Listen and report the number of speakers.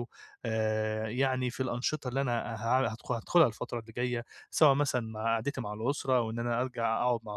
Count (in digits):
1